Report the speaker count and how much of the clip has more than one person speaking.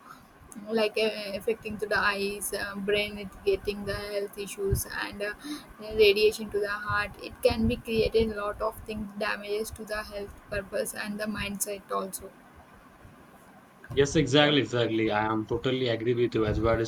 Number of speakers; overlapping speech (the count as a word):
two, about 1%